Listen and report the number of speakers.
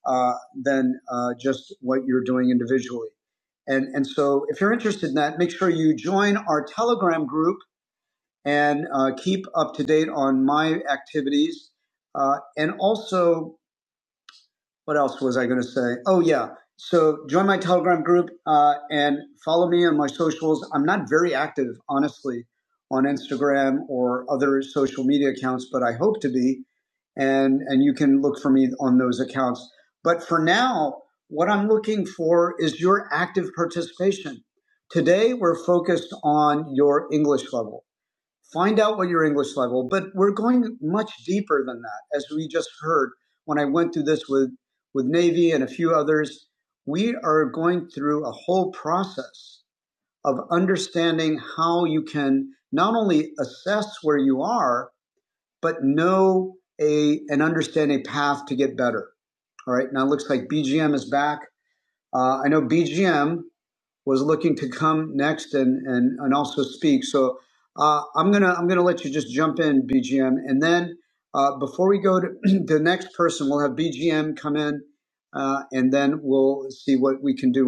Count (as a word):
one